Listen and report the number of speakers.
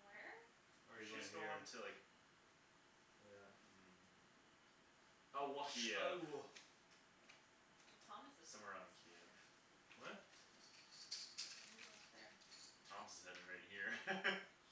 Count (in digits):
3